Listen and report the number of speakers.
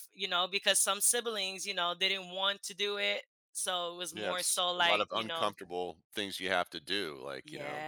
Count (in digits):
2